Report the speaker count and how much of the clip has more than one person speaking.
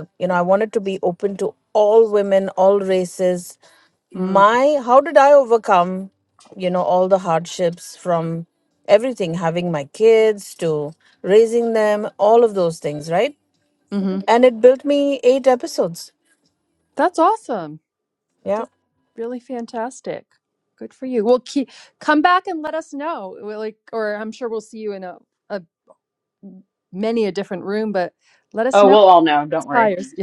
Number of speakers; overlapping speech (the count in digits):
3, about 3%